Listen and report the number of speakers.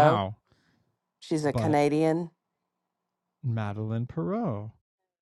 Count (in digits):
2